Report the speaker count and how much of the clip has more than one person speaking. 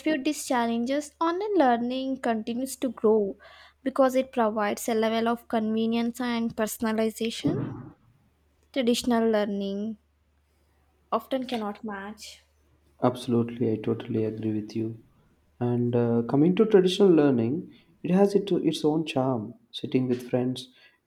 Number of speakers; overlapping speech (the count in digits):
2, no overlap